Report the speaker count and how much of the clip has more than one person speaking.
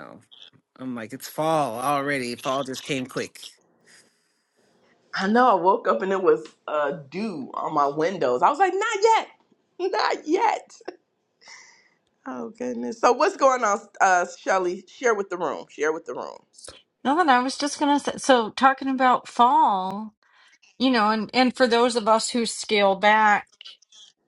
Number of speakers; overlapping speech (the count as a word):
three, no overlap